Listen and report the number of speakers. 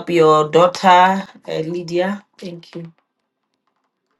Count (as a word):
one